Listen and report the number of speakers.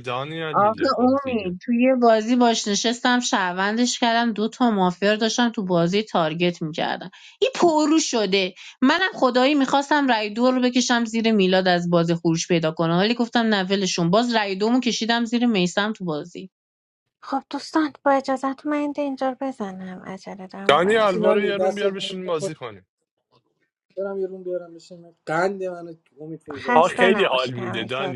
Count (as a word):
four